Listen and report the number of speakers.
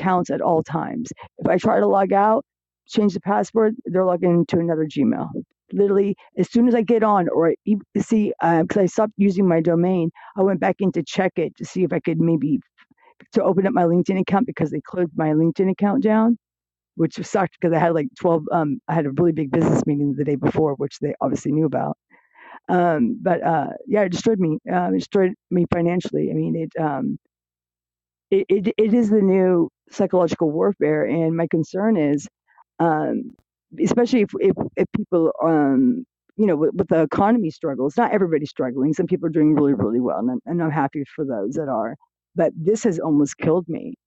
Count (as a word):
one